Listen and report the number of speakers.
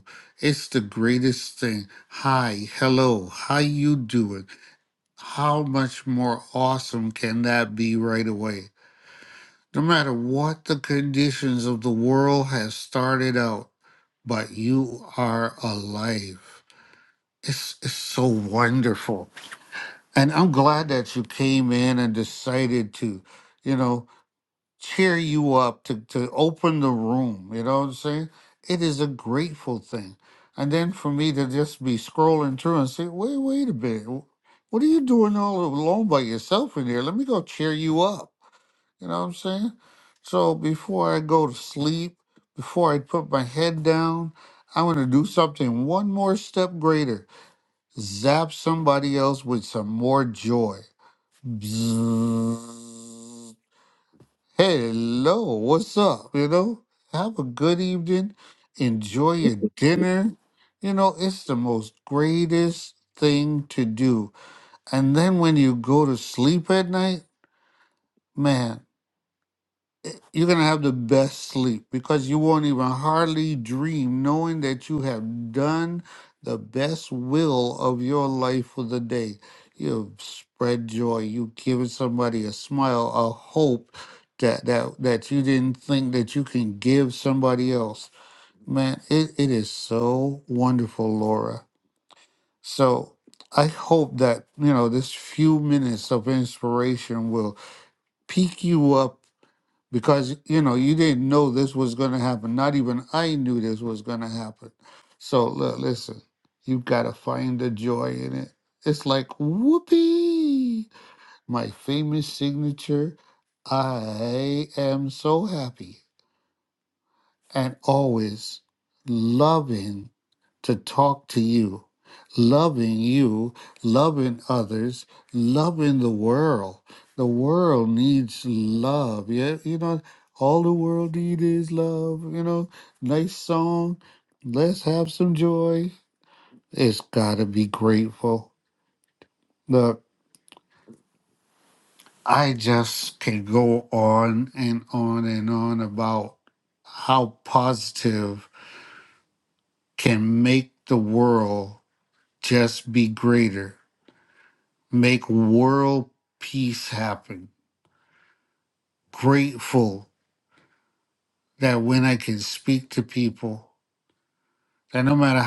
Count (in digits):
1